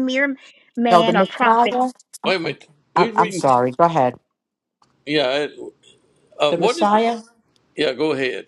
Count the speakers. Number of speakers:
three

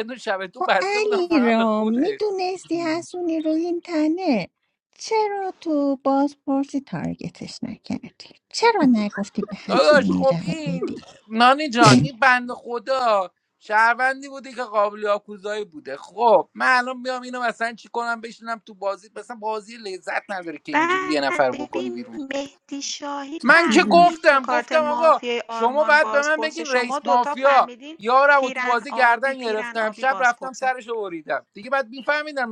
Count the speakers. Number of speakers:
three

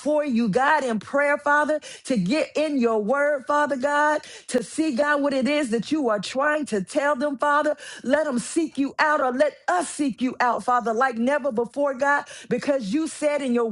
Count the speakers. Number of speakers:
one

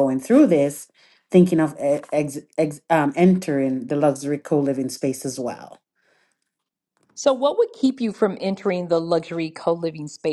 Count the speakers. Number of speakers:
two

